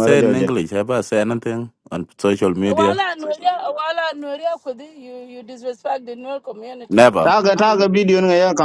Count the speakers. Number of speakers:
three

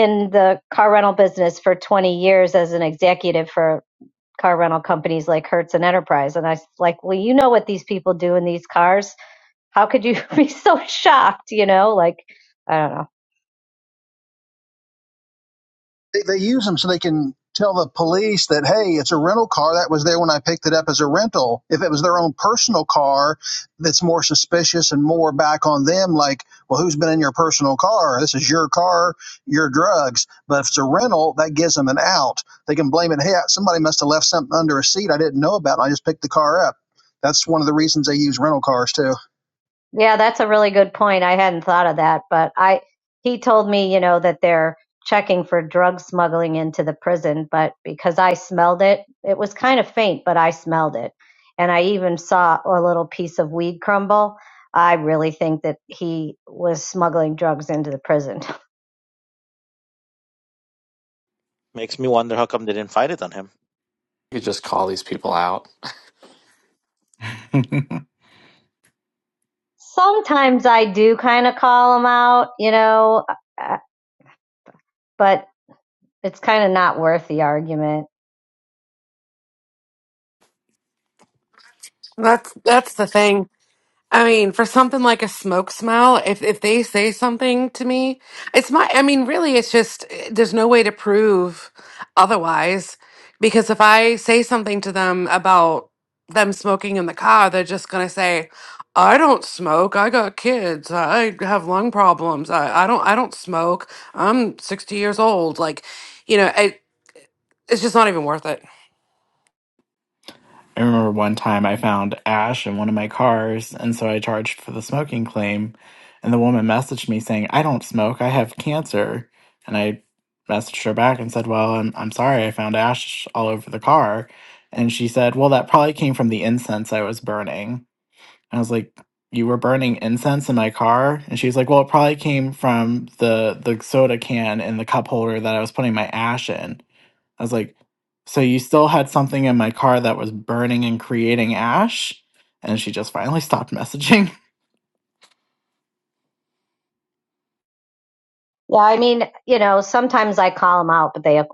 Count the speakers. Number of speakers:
six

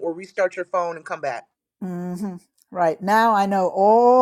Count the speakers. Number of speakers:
two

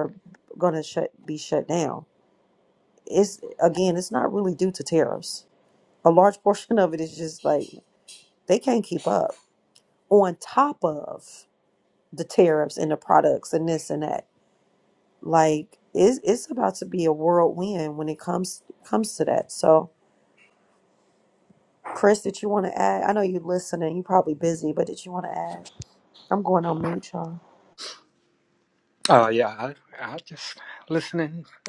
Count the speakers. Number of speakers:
two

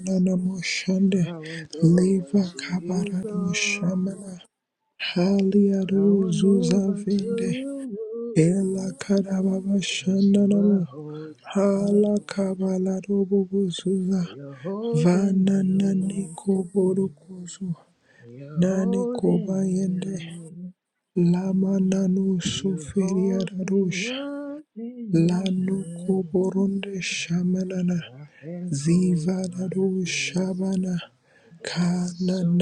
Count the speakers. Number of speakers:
two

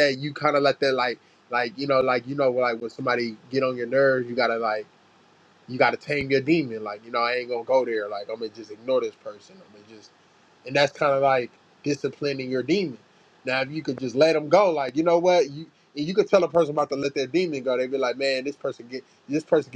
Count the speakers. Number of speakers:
one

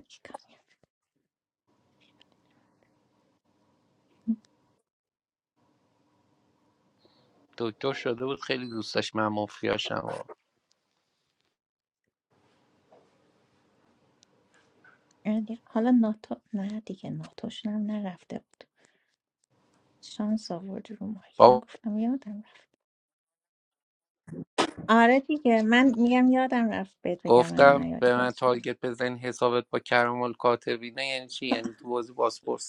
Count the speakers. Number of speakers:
two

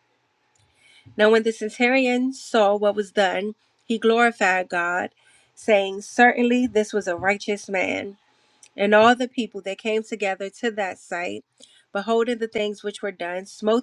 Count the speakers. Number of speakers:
one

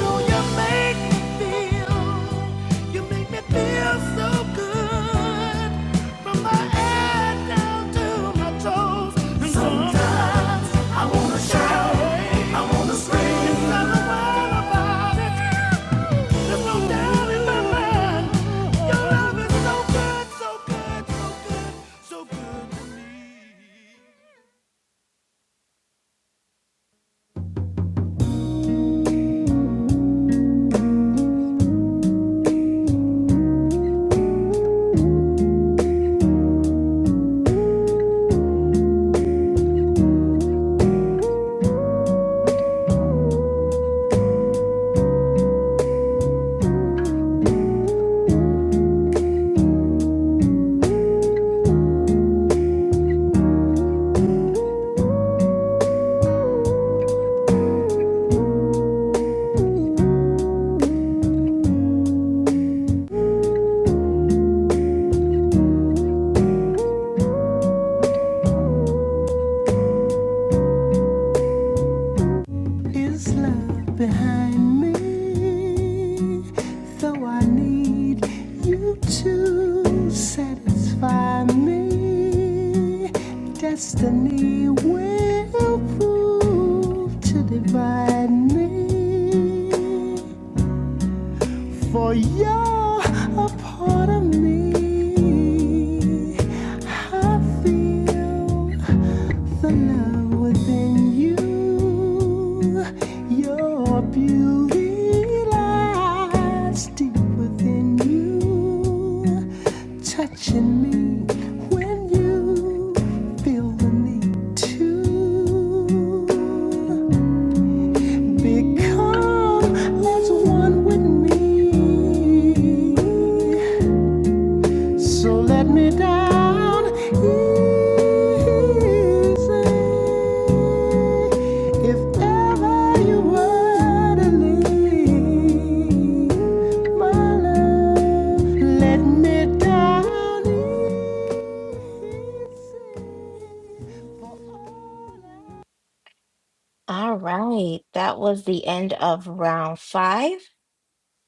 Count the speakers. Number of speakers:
three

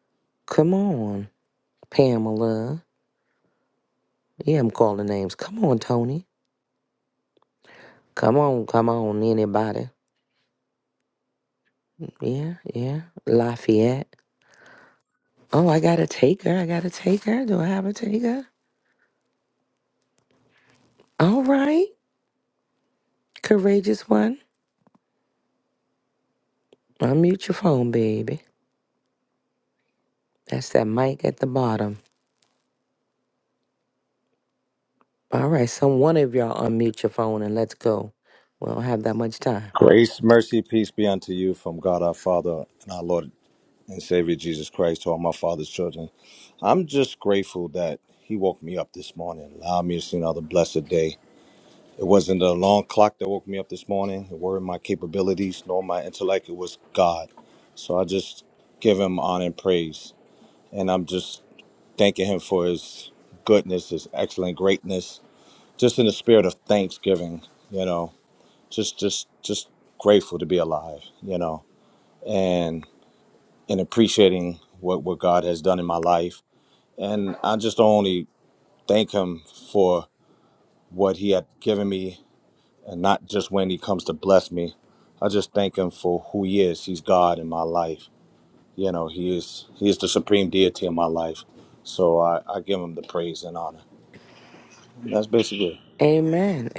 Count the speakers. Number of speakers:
two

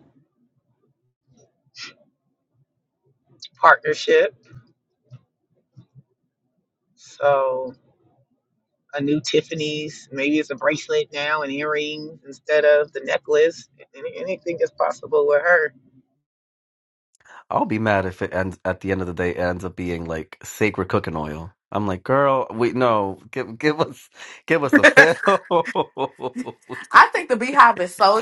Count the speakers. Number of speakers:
three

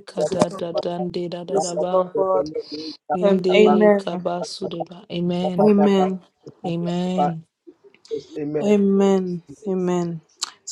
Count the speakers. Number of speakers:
three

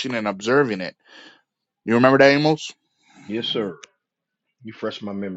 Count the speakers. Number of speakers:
two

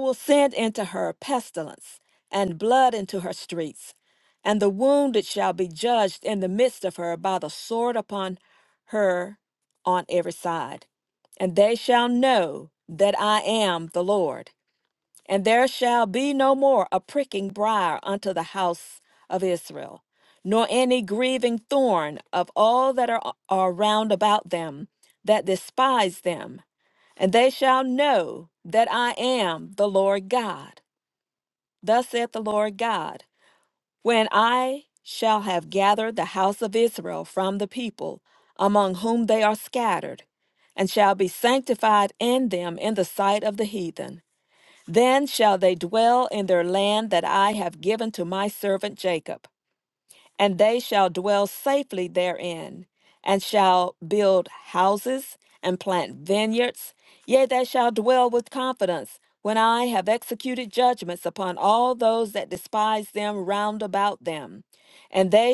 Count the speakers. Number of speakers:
one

